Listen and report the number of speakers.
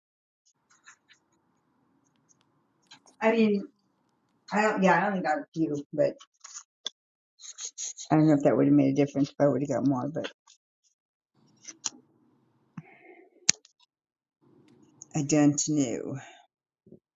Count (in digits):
1